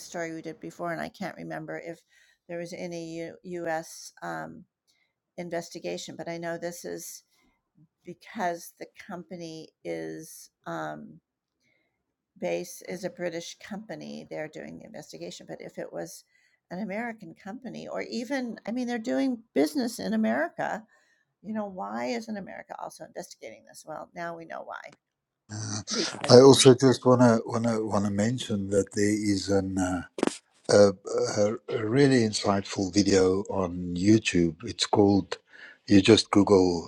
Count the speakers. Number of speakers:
2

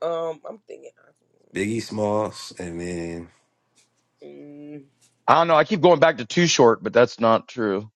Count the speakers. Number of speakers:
3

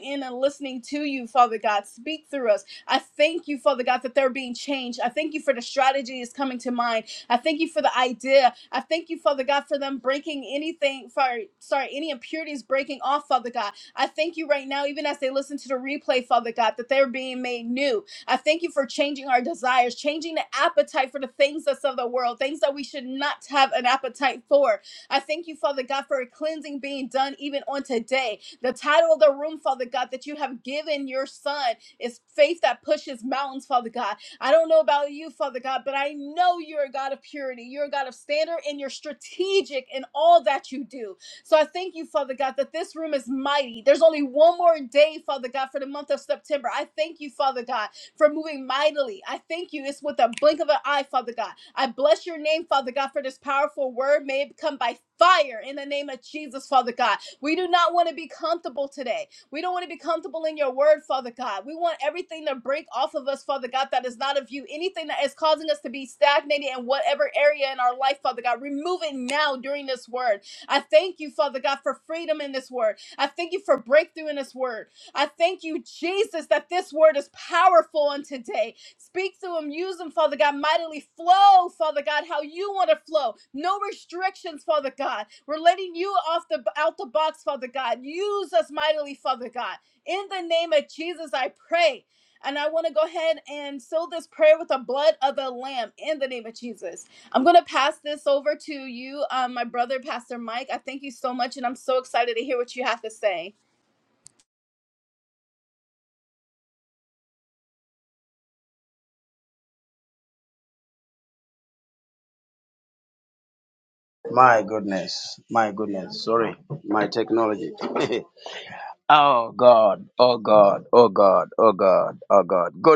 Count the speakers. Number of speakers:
2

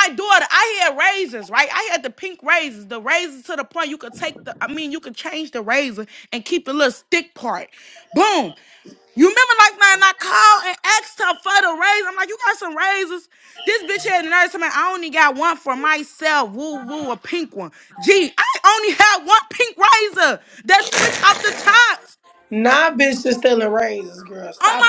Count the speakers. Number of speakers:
2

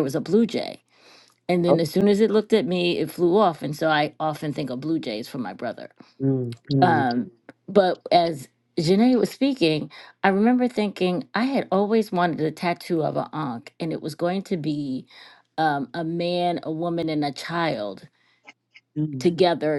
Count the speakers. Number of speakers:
2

